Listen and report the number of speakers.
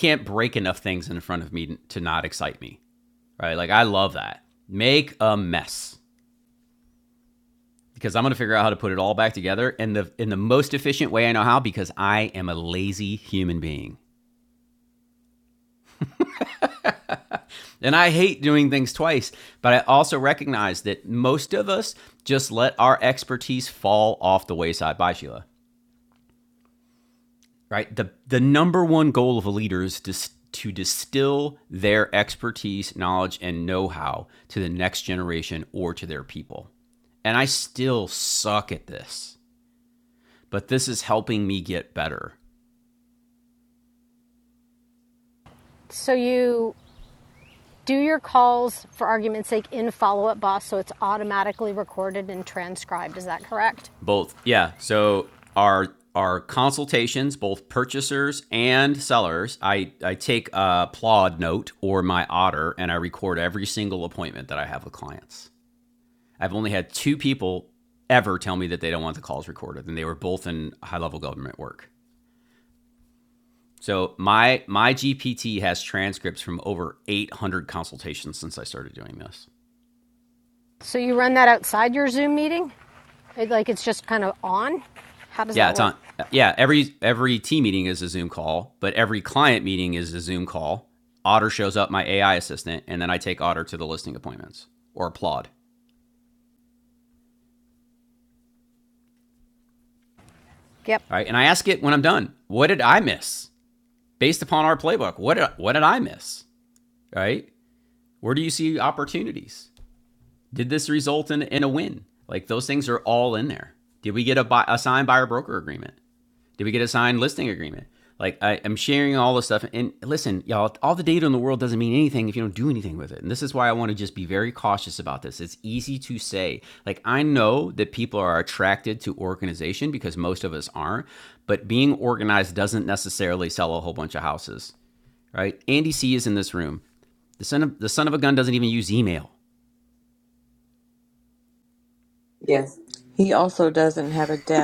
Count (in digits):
3